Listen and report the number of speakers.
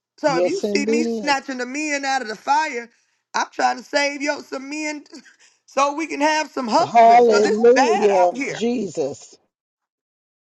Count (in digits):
2